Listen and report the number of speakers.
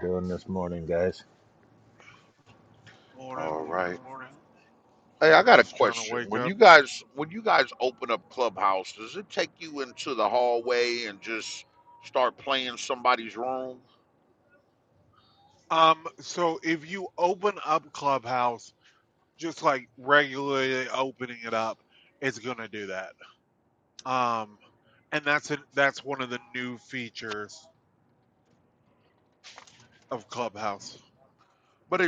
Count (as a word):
three